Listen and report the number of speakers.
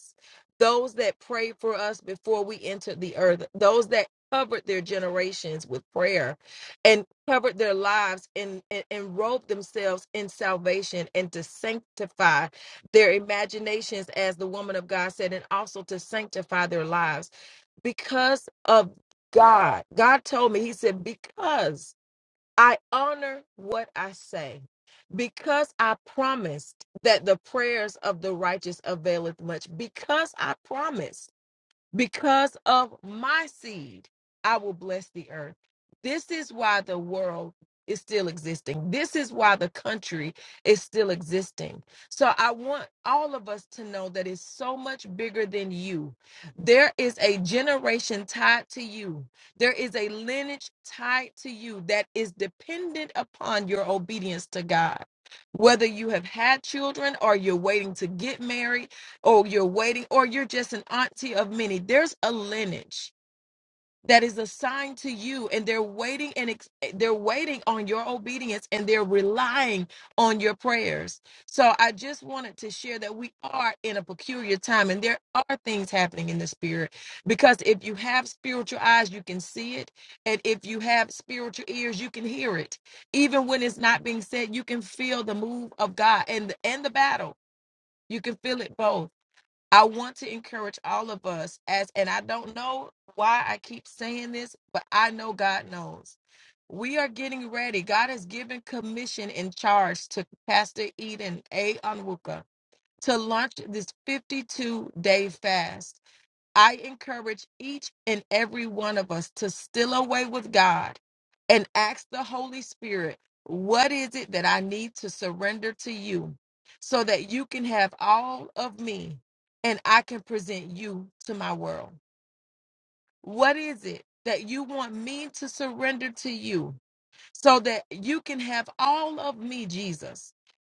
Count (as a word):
one